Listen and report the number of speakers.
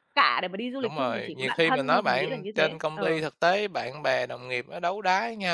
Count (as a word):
two